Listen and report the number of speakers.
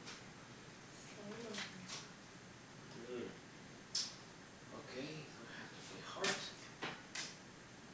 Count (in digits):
1